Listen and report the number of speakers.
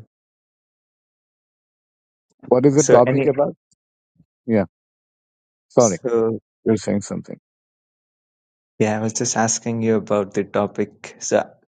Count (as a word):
two